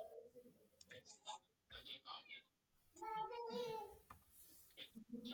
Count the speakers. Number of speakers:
0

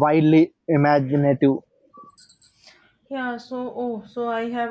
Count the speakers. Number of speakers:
2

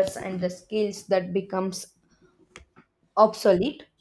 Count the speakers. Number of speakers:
1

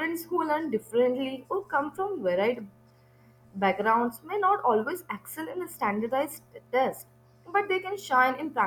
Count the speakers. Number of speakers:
1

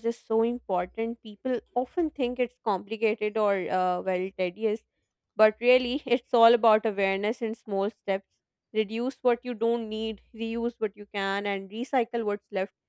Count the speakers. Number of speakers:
1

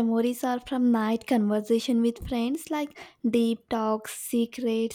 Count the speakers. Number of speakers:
1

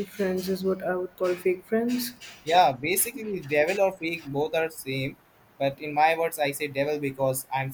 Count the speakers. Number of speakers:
2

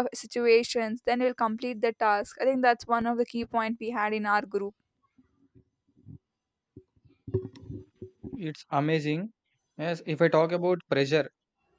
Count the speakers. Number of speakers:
2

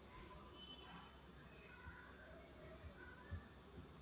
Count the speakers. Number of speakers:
0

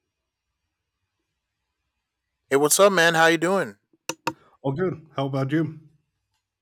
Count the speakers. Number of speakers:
2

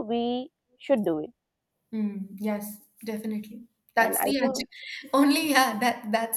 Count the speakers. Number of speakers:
2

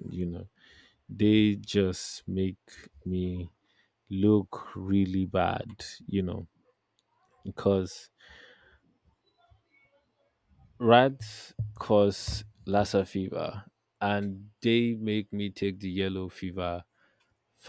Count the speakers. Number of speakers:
1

